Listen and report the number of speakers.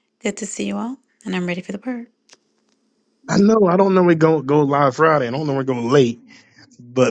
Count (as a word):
two